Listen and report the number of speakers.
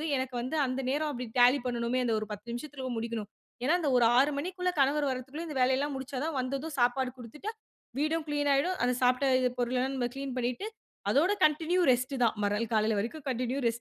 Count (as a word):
one